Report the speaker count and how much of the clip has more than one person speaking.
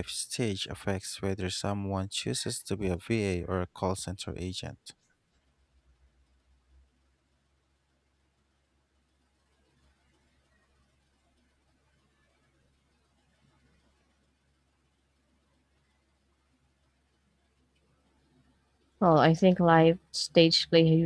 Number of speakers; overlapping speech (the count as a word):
two, no overlap